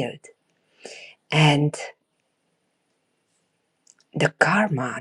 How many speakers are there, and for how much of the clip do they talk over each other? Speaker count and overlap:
one, no overlap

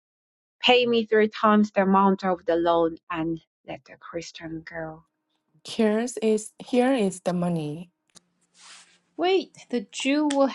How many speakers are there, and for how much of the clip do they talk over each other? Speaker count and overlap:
three, no overlap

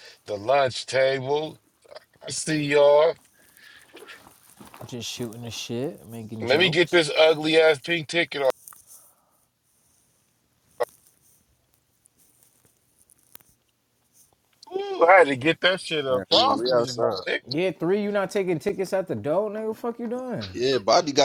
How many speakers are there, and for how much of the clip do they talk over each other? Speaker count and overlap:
three, about 7%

